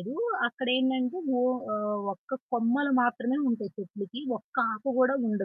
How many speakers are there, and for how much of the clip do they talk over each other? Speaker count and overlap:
one, no overlap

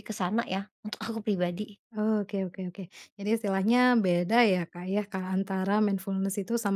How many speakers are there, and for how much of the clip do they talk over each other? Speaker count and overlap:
two, no overlap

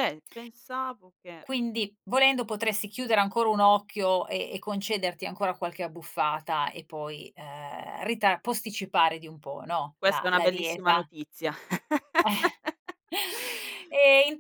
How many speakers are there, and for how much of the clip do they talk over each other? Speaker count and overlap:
two, about 7%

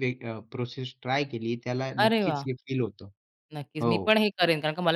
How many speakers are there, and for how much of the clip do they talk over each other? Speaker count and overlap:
two, about 16%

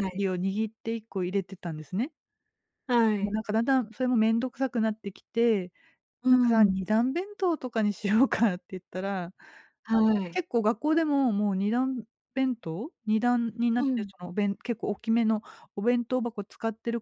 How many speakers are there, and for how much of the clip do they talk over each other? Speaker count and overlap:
two, about 6%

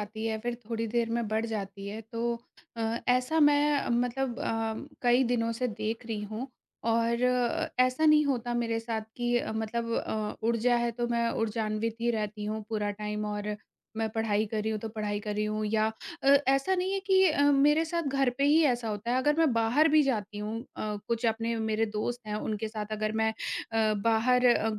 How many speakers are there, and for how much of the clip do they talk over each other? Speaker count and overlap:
one, no overlap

